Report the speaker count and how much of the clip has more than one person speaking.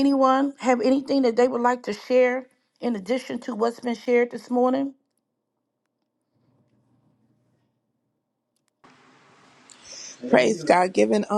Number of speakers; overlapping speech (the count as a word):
two, no overlap